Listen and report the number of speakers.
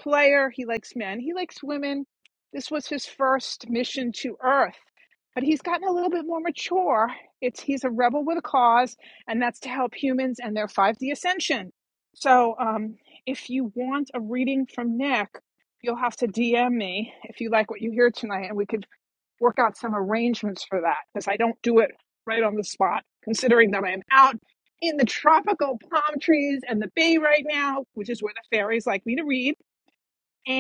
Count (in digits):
1